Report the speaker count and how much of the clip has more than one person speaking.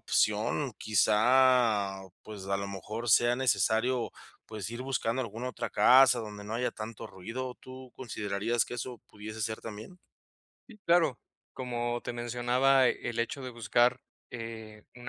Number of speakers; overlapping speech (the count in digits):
2, no overlap